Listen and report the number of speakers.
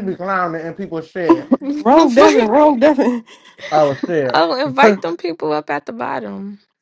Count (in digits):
3